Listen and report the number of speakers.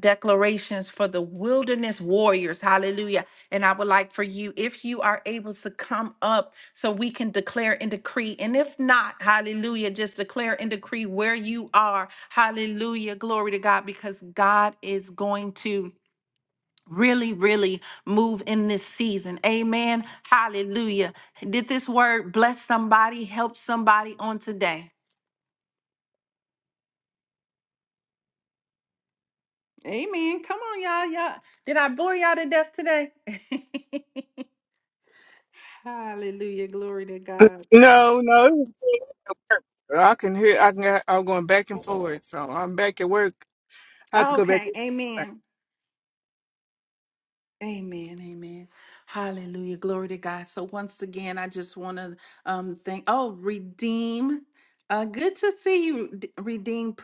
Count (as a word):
two